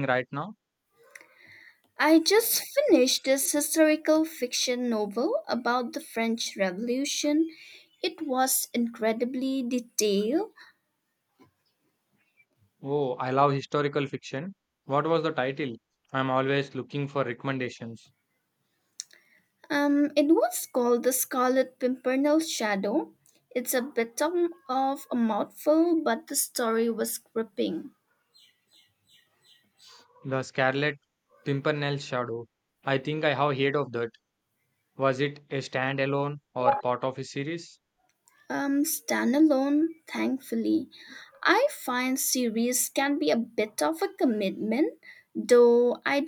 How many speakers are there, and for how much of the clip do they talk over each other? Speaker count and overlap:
2, no overlap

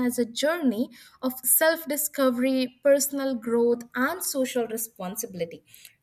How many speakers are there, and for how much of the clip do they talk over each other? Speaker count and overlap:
1, no overlap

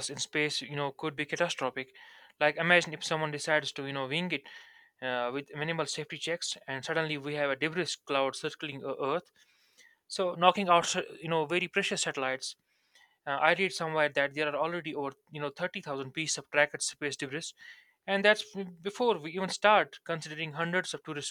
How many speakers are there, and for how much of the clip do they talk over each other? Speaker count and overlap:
1, no overlap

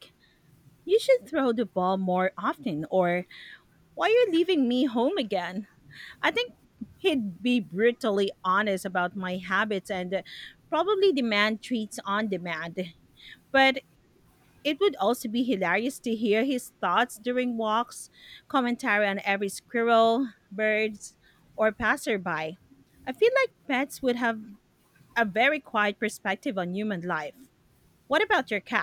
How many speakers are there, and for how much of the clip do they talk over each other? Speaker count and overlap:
1, no overlap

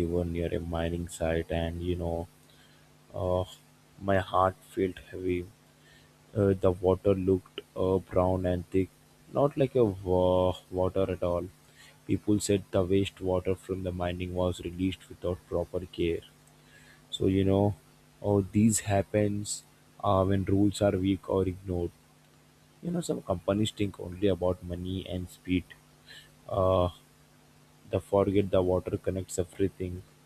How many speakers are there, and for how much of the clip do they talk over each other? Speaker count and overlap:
1, no overlap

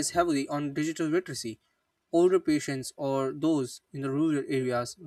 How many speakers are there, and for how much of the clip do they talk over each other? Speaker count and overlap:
1, no overlap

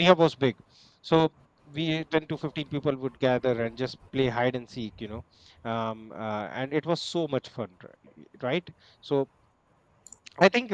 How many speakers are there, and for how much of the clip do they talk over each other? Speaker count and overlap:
1, no overlap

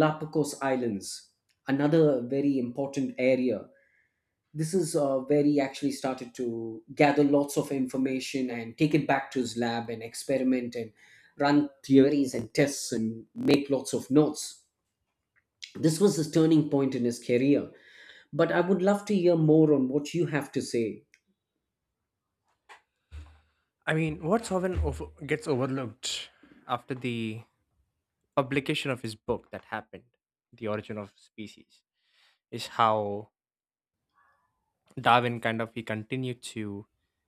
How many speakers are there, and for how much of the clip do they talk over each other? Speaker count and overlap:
2, no overlap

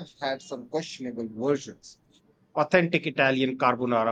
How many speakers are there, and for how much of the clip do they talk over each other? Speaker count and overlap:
1, no overlap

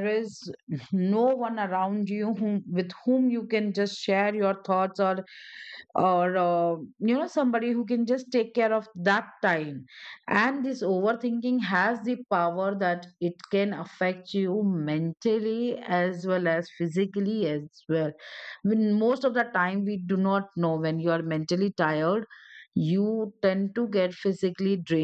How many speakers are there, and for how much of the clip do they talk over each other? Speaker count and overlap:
1, no overlap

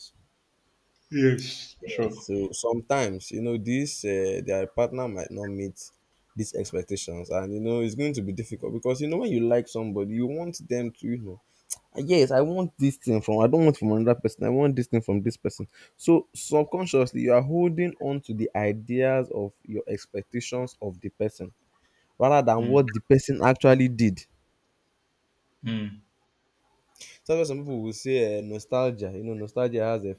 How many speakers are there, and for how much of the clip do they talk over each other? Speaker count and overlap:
2, about 2%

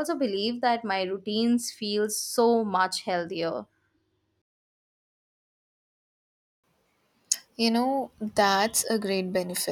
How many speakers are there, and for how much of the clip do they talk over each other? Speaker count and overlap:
2, no overlap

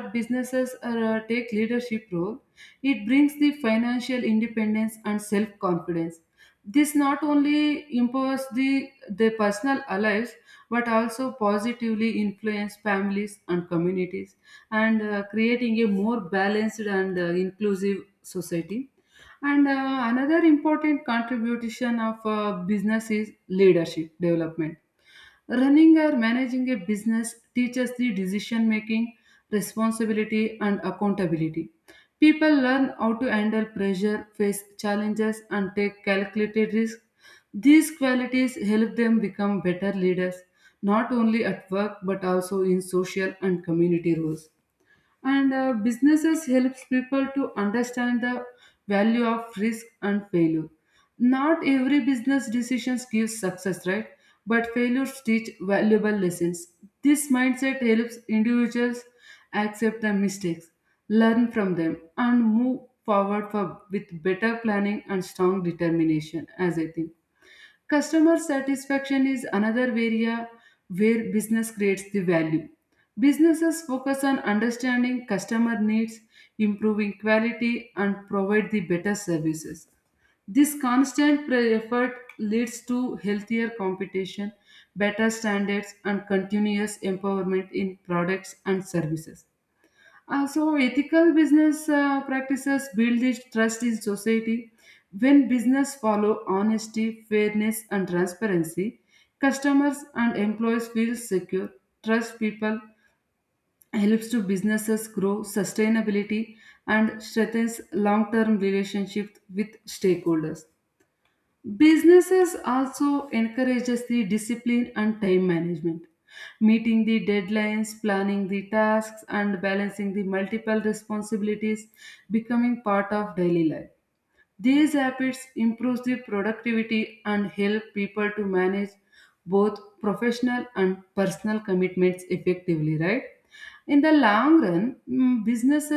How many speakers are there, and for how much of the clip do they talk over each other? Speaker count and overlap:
1, no overlap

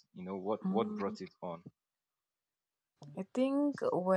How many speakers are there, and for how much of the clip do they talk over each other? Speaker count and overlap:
2, about 13%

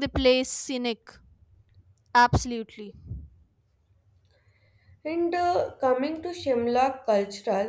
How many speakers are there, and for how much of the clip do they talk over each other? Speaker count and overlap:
2, no overlap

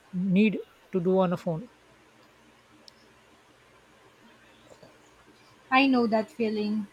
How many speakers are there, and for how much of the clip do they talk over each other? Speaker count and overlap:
2, no overlap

